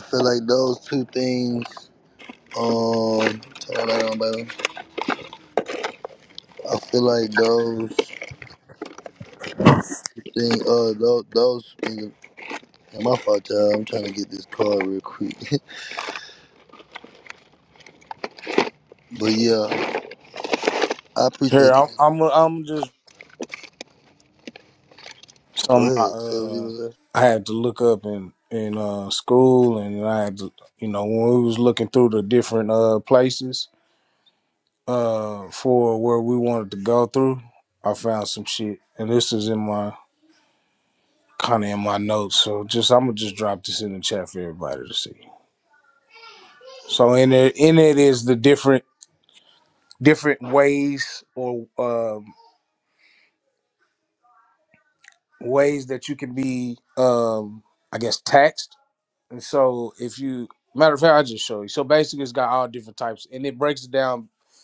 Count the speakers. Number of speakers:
2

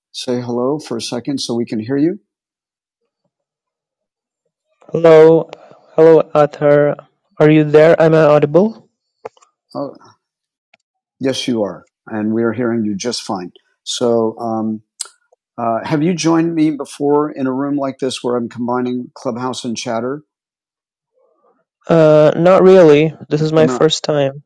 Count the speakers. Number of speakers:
2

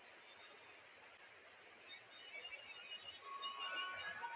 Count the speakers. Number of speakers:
0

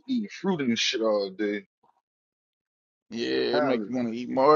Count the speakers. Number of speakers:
2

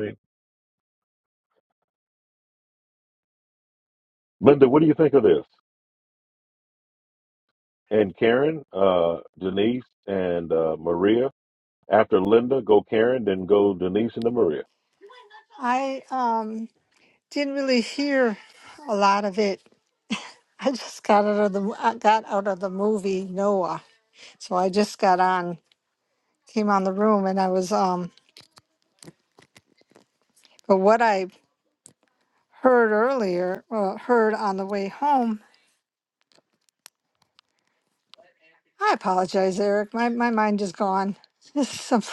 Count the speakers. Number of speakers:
2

